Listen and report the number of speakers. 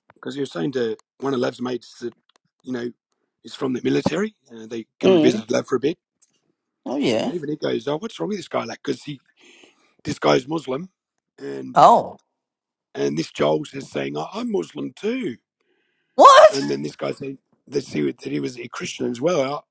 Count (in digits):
2